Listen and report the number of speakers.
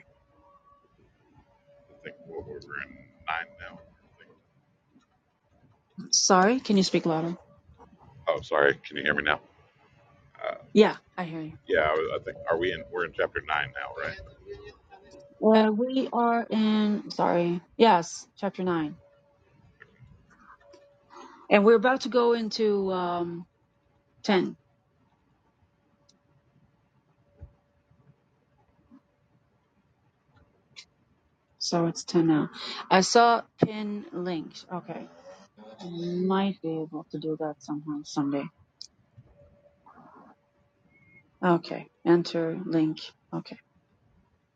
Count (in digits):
2